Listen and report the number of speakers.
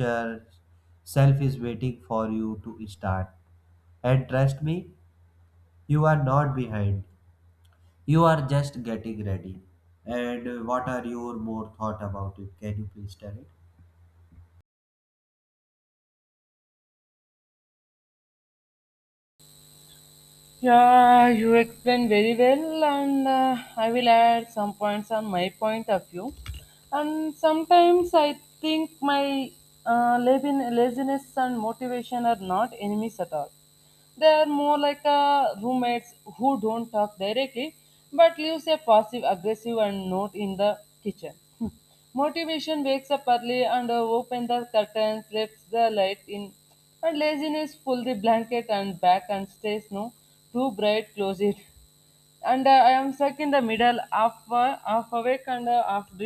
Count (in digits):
2